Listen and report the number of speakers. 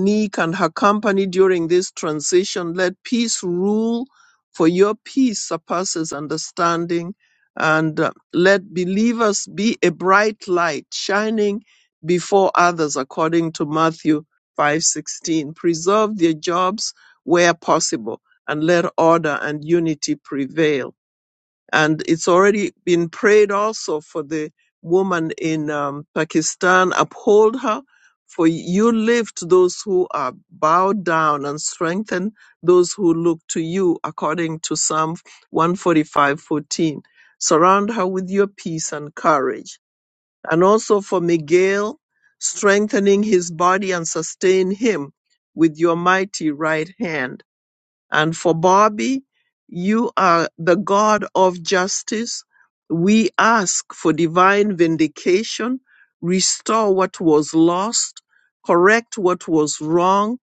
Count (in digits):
1